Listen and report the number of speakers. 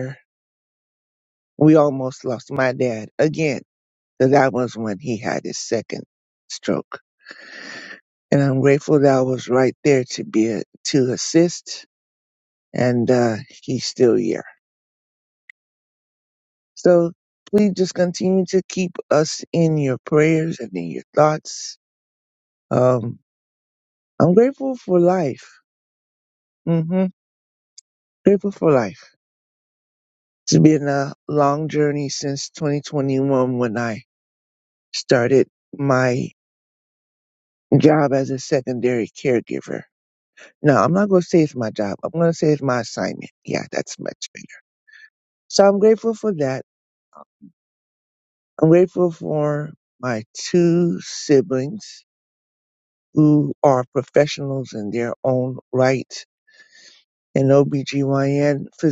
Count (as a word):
one